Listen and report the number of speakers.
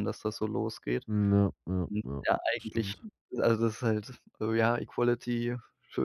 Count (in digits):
2